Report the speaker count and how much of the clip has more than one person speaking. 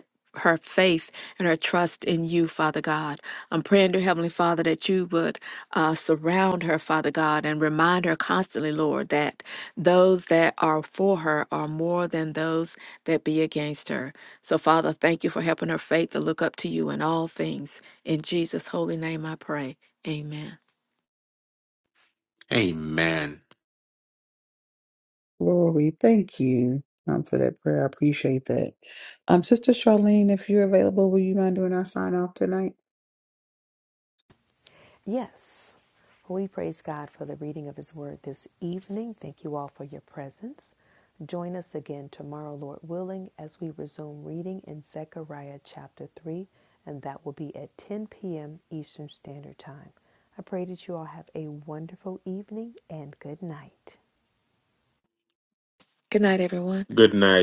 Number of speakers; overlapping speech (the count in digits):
4, no overlap